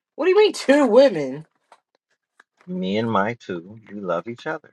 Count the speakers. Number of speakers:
2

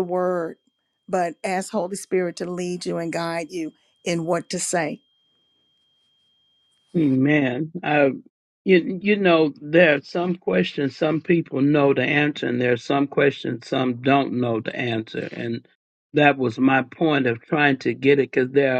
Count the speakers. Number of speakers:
2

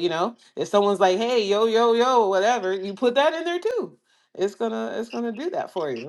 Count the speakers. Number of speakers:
1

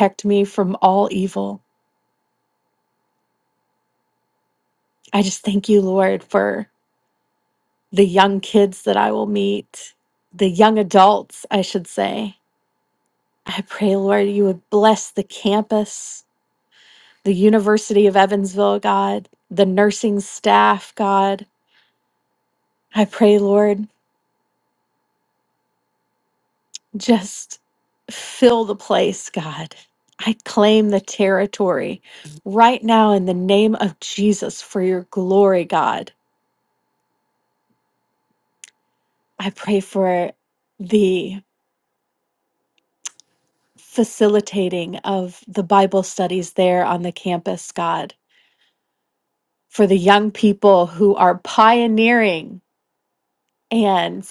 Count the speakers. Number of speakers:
1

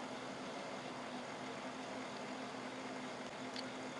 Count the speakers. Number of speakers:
0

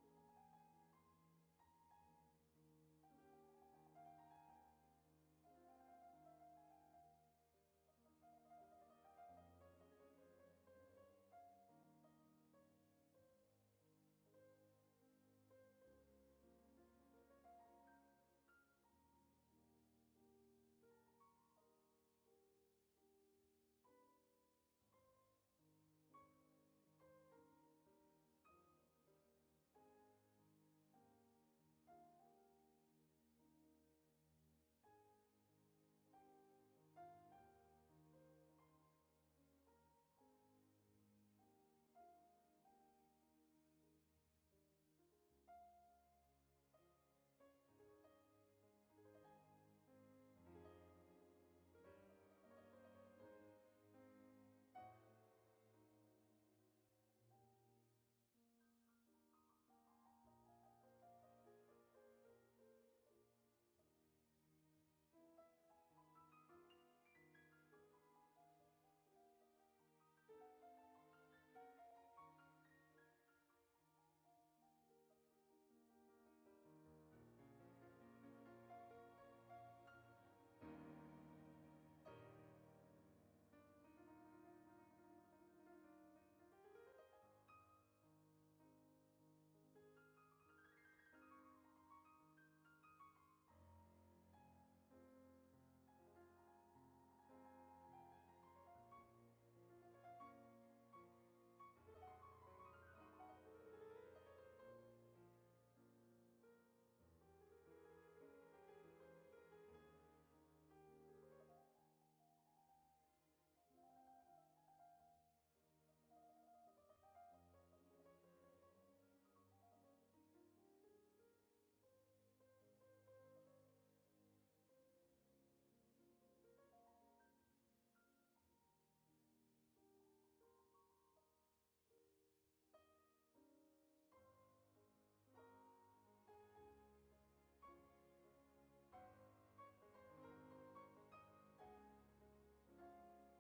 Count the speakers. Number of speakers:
0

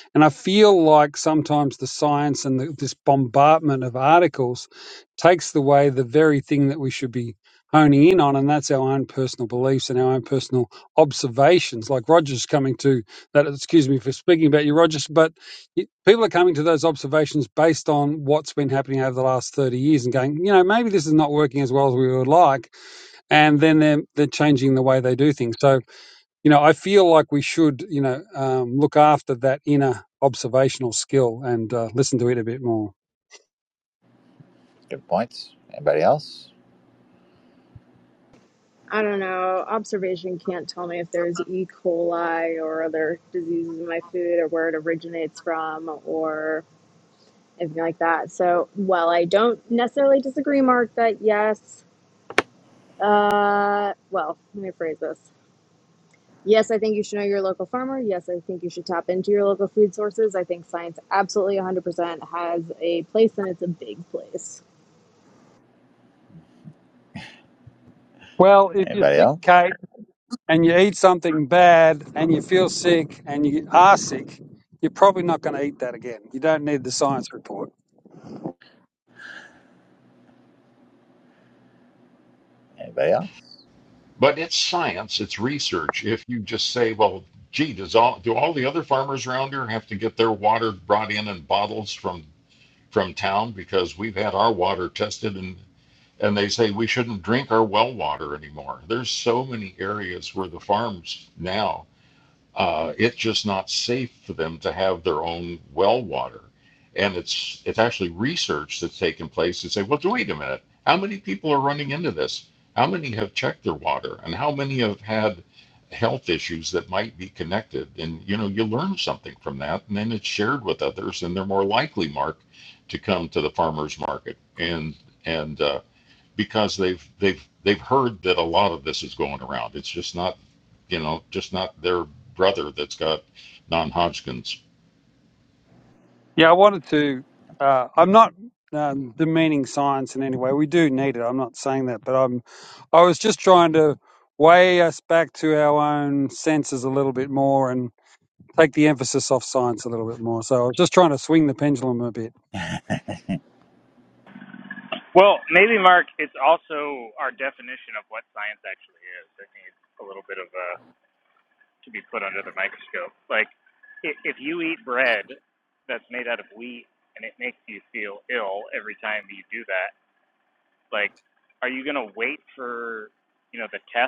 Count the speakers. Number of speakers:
5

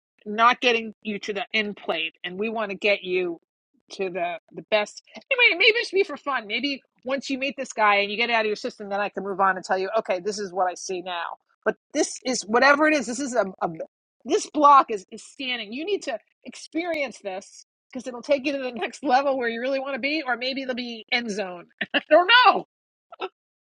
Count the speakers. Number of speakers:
1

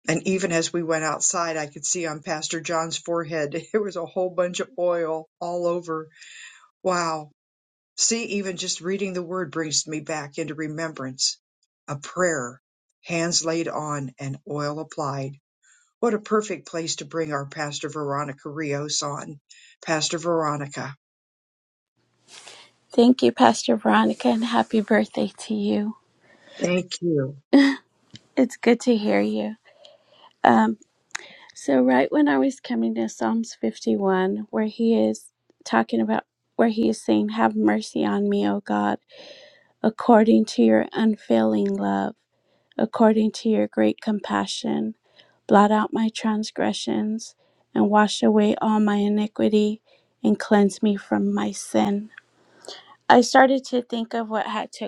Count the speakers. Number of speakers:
2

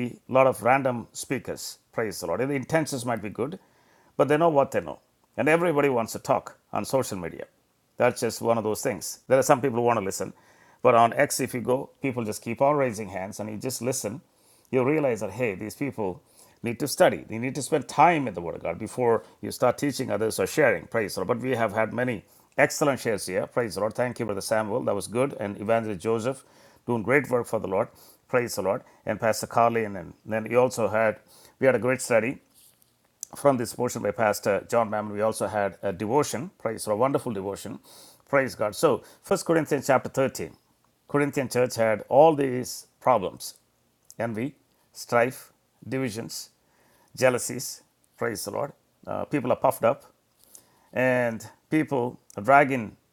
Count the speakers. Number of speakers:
1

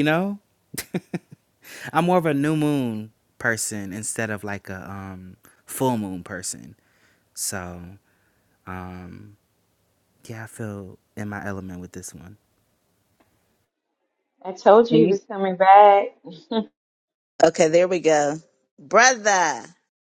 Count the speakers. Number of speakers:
3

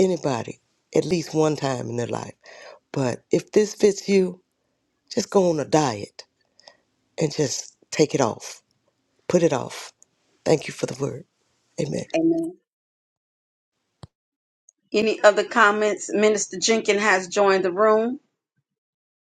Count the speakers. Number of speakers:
2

